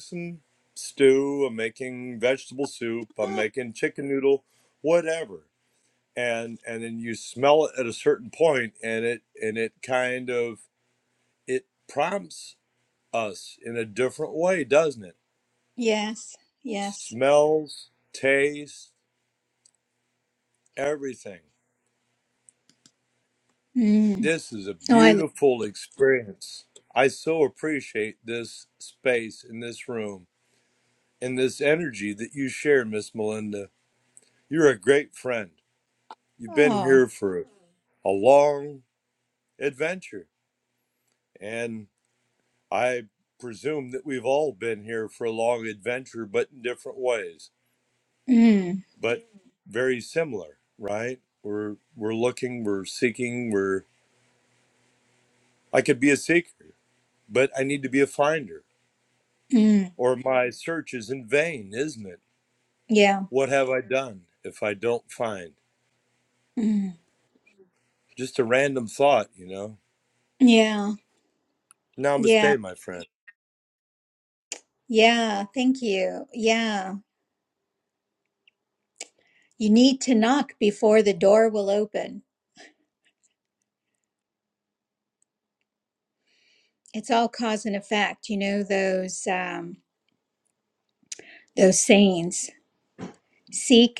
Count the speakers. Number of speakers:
2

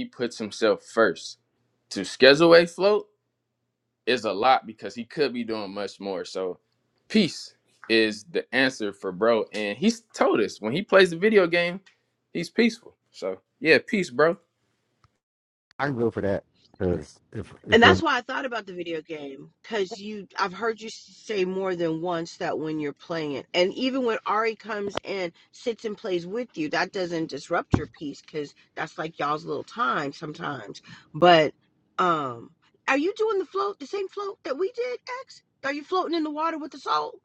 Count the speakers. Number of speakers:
3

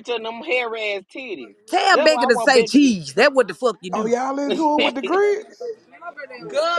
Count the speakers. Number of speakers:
3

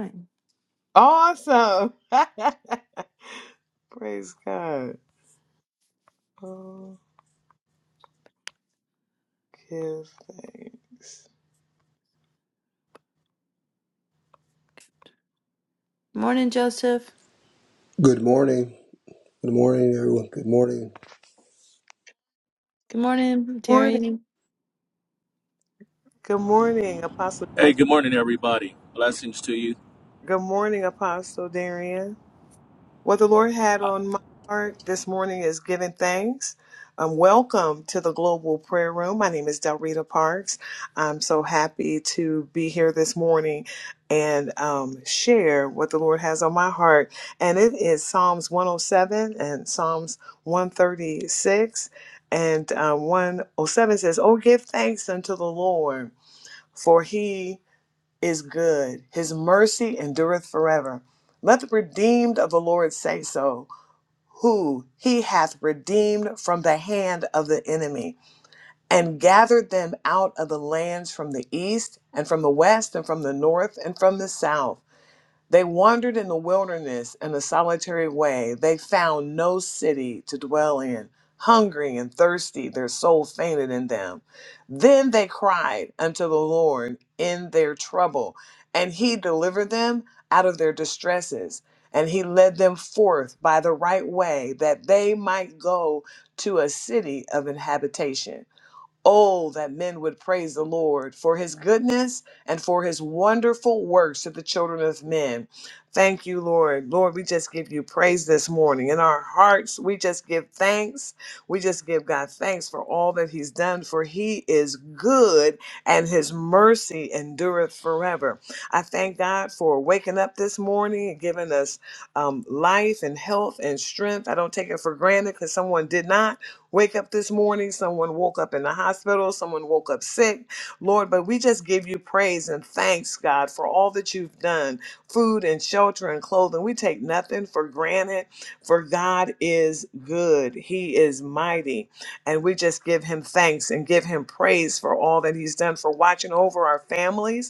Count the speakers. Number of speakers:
4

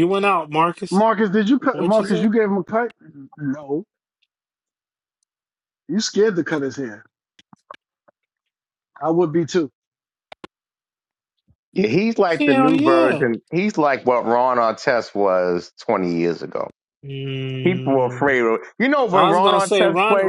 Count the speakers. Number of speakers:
3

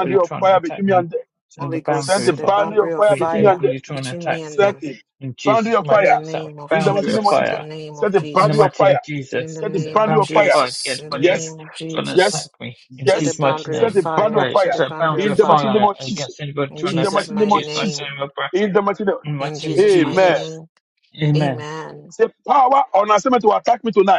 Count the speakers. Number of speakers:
3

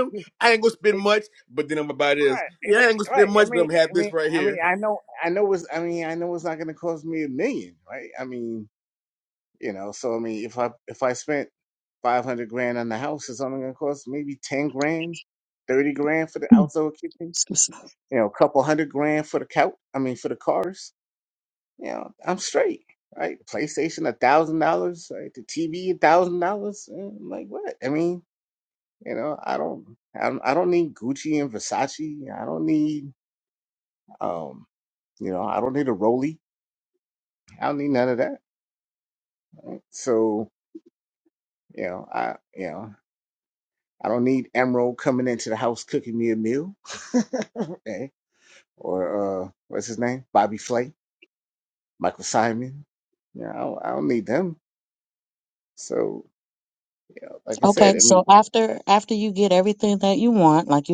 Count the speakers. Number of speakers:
3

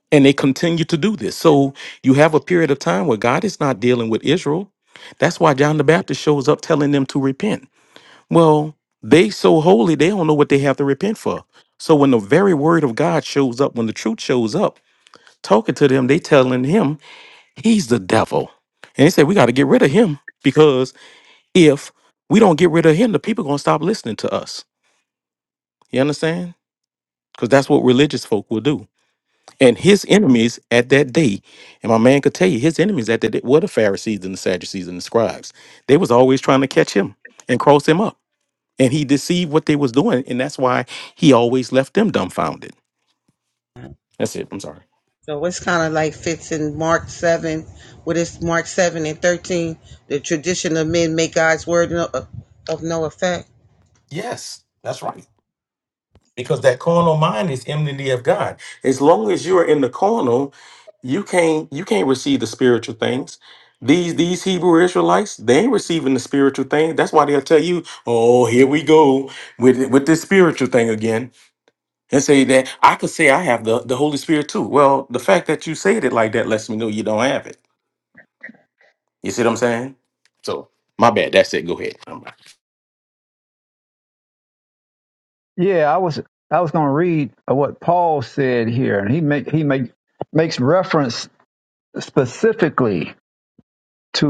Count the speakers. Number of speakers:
3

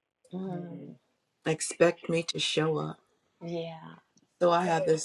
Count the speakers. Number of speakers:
2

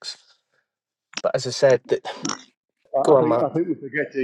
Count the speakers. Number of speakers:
2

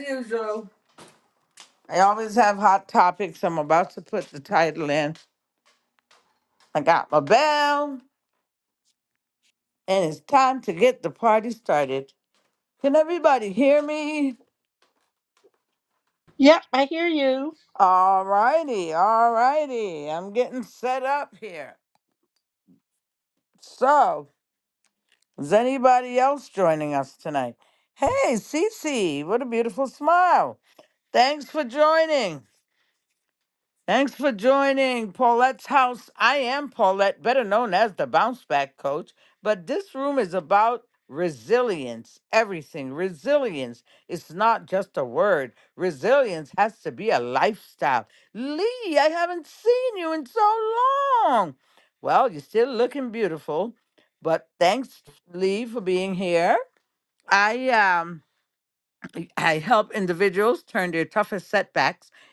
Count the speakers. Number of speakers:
2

